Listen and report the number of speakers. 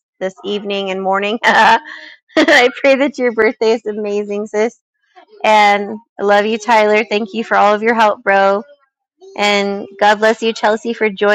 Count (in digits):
1